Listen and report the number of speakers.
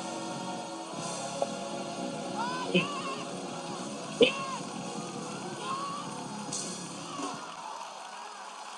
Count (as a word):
zero